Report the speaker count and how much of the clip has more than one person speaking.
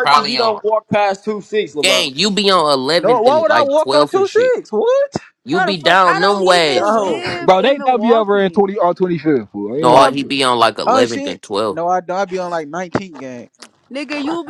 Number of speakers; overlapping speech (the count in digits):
5, about 43%